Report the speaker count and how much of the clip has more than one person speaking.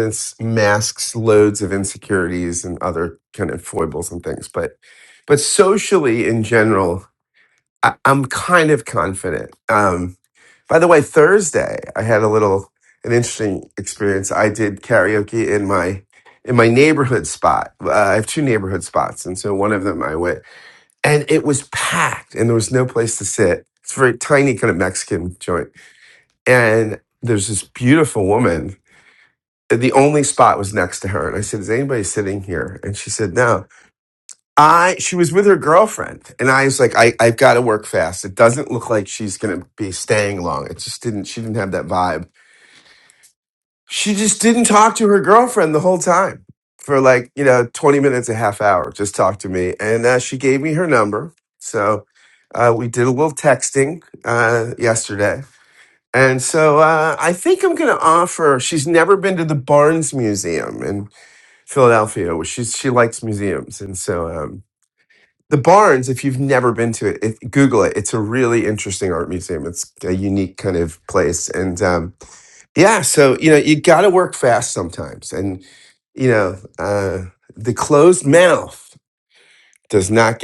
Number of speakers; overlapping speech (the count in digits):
1, no overlap